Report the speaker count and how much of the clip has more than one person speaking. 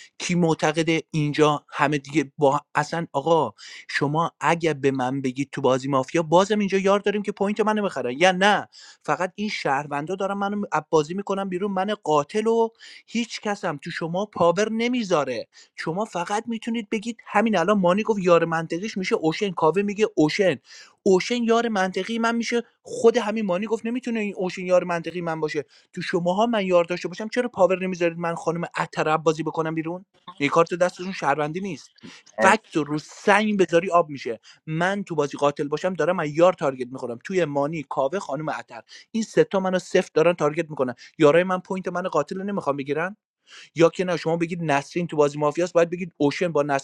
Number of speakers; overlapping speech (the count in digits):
1, no overlap